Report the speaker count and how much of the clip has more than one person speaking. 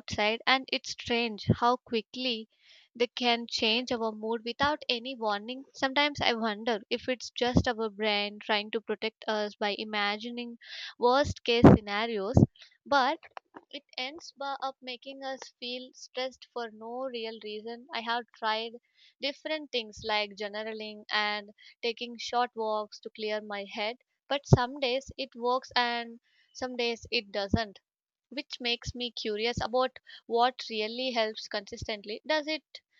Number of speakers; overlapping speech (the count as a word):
one, no overlap